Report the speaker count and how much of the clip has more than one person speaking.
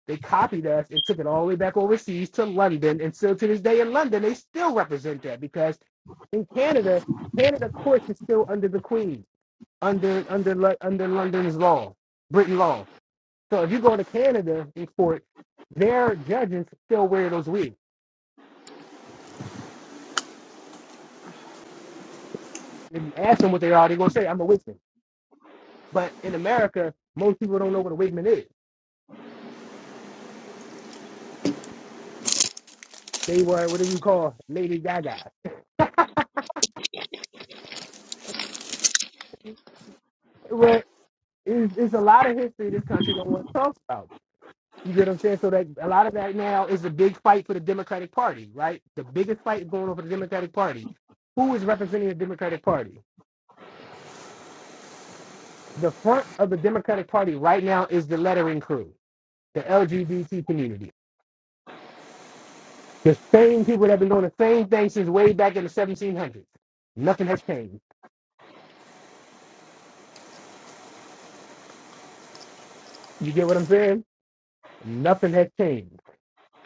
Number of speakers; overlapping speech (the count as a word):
one, no overlap